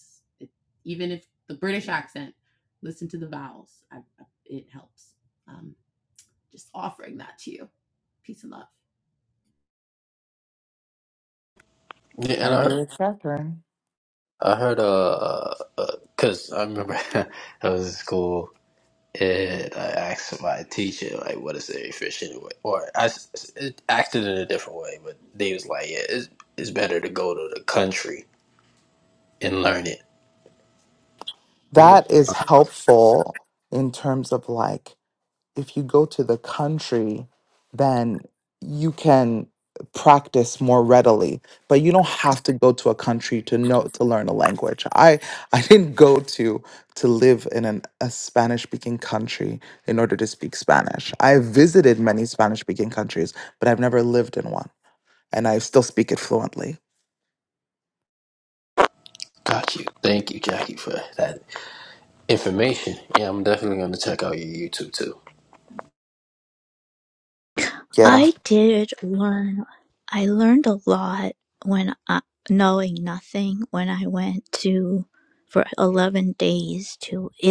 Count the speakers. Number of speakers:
four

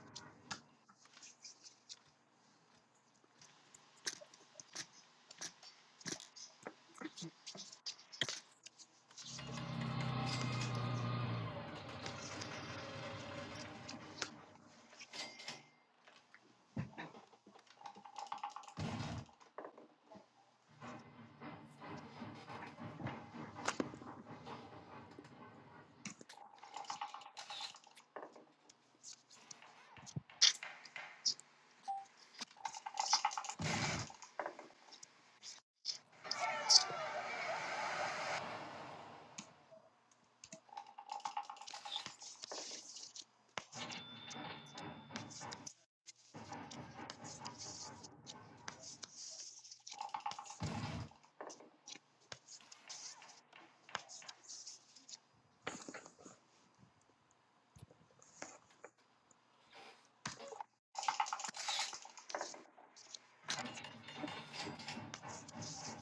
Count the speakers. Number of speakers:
zero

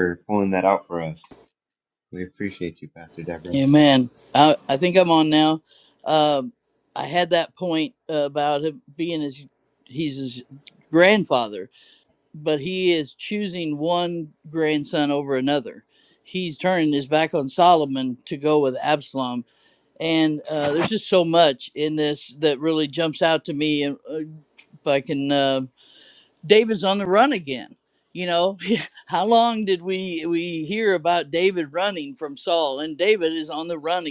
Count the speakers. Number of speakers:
two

